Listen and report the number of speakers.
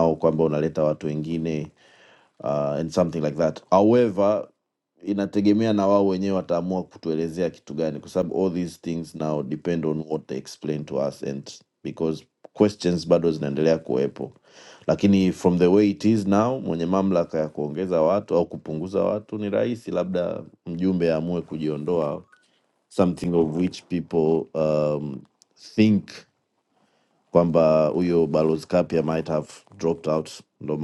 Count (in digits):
1